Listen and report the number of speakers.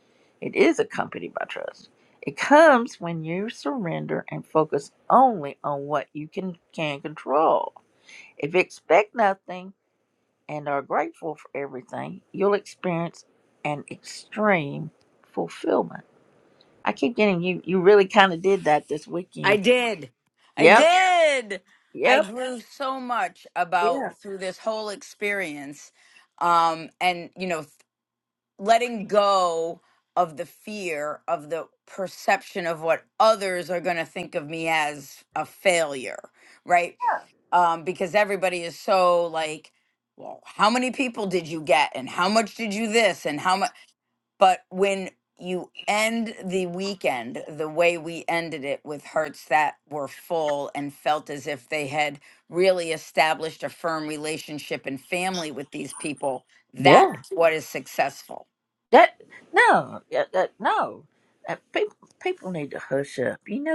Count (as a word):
two